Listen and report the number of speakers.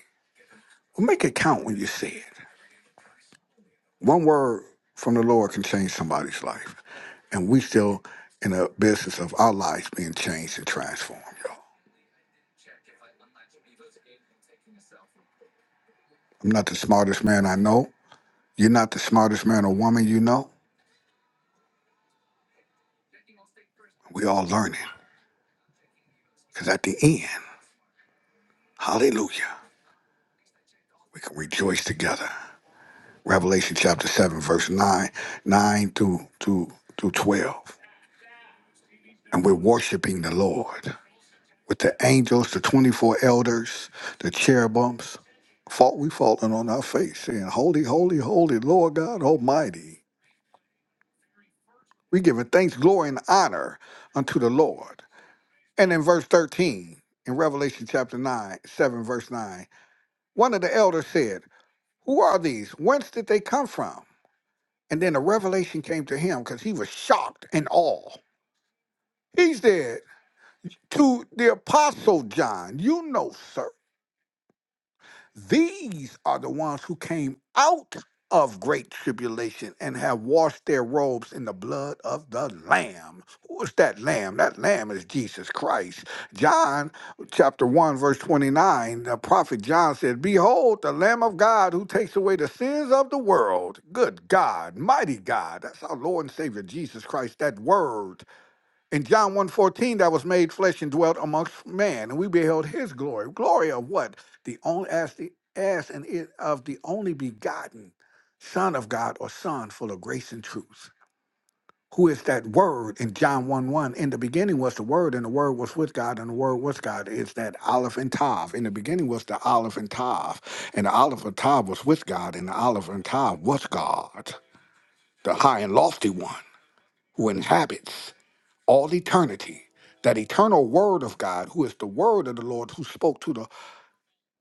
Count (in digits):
1